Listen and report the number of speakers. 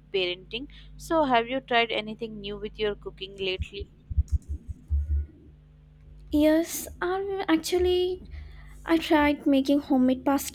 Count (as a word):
two